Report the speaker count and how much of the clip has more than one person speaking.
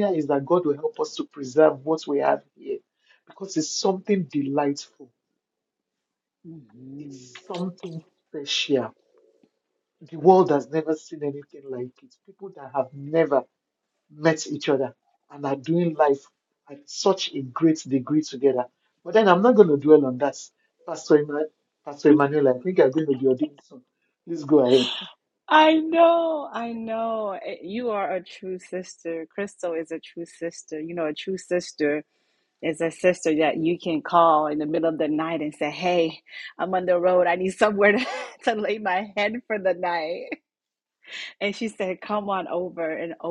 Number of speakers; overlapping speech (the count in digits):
2, under 1%